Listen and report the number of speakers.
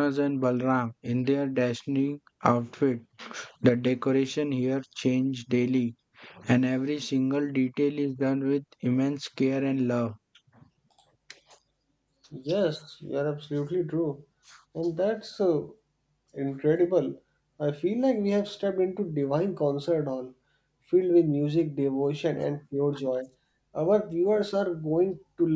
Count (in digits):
2